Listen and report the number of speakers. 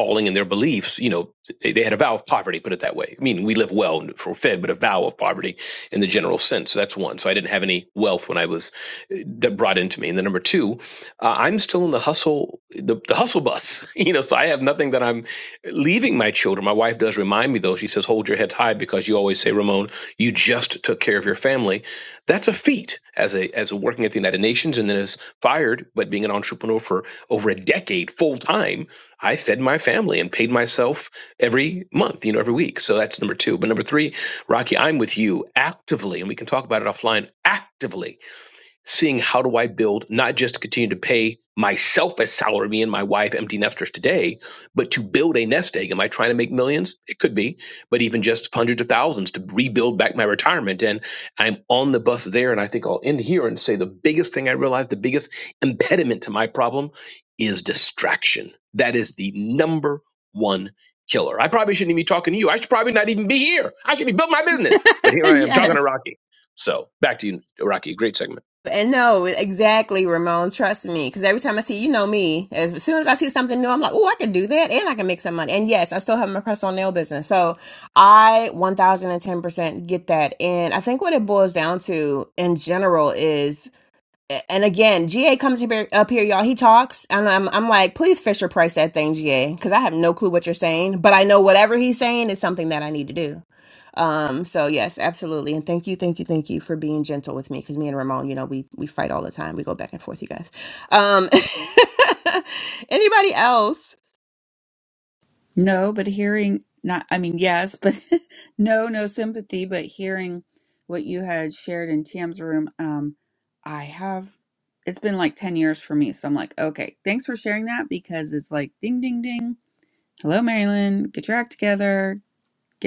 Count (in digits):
3